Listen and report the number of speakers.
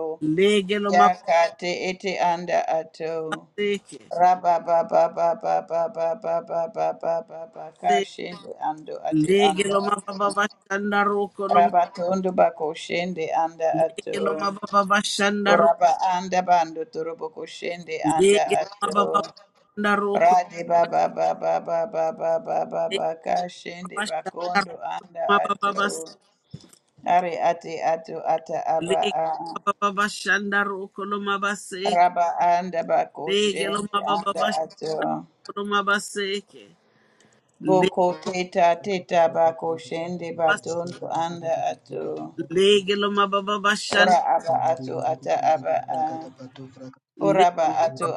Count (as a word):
three